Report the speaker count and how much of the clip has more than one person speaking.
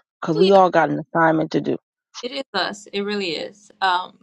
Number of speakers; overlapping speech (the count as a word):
two, about 6%